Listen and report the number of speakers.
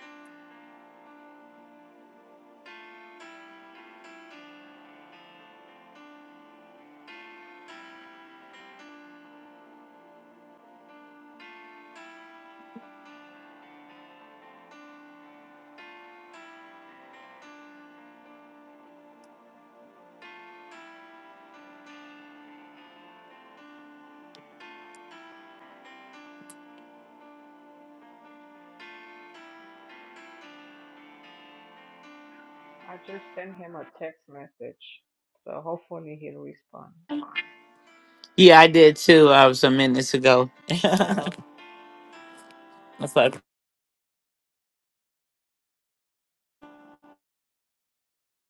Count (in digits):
2